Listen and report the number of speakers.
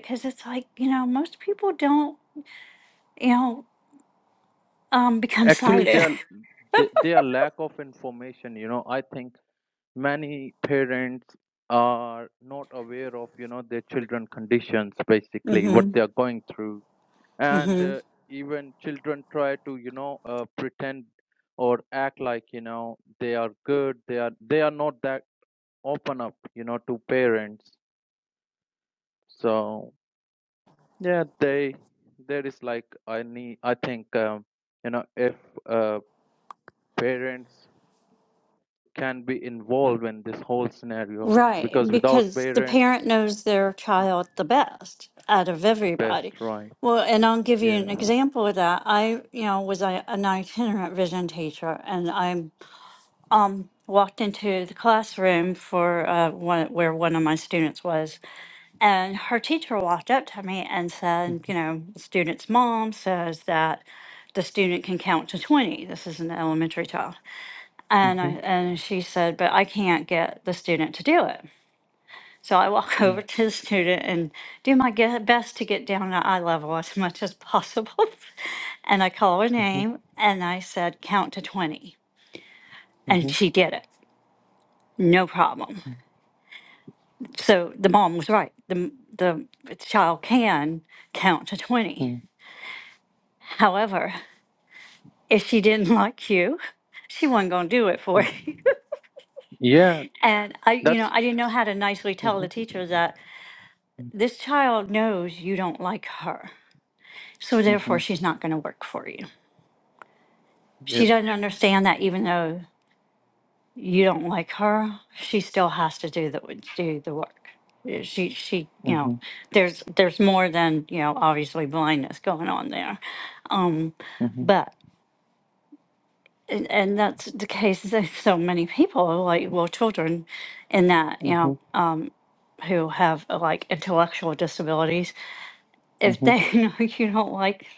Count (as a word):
two